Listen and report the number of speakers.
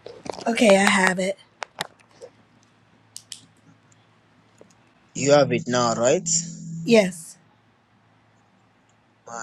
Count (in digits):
2